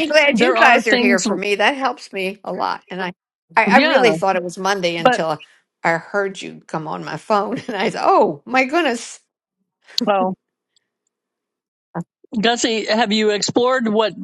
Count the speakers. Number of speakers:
2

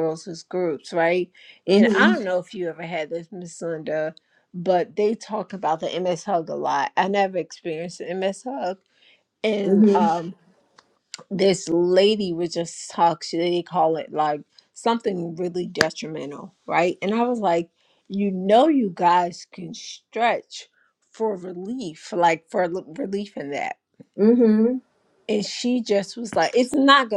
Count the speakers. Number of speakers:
2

